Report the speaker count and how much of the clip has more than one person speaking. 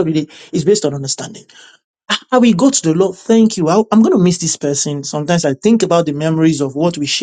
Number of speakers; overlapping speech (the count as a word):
one, no overlap